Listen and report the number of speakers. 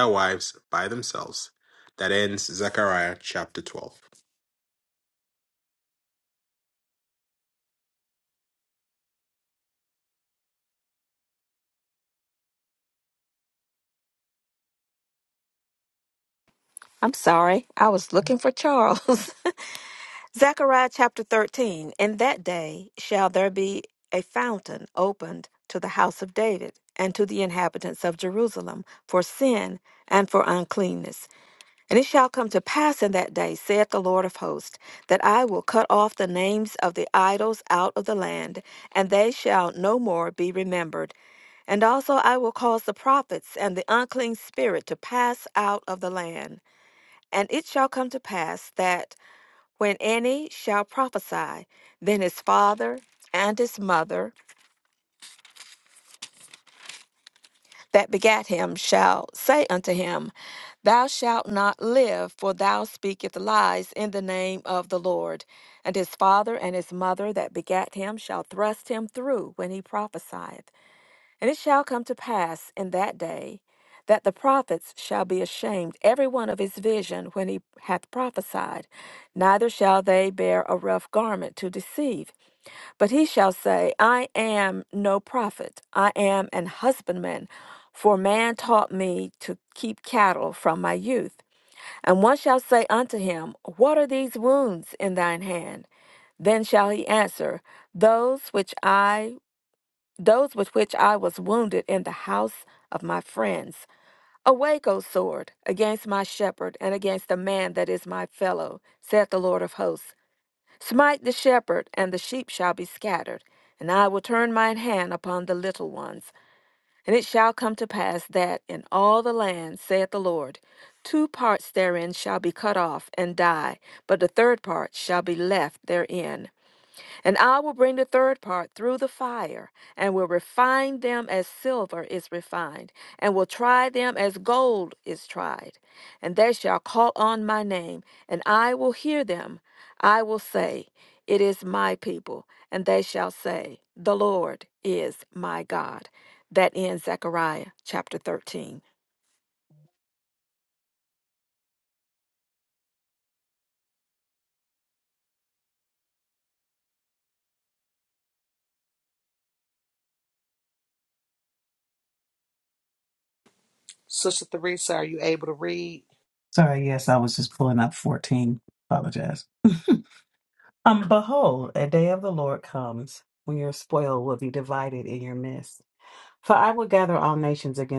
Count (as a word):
four